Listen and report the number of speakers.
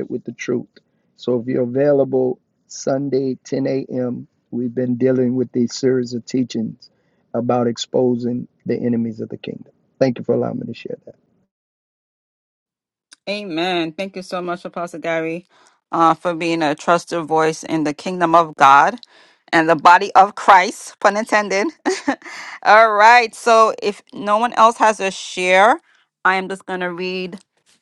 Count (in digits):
2